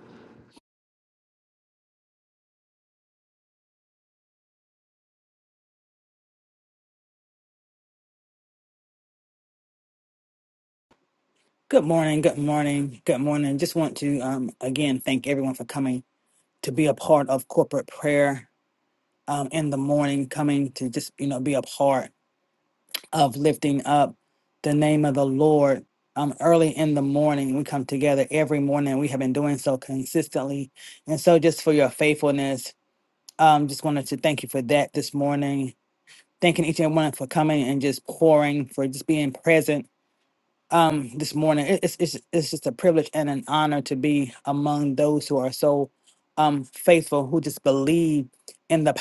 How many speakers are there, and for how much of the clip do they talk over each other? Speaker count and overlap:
1, no overlap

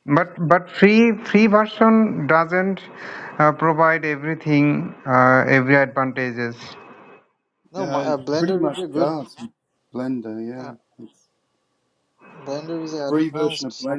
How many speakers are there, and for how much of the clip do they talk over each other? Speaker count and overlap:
3, about 17%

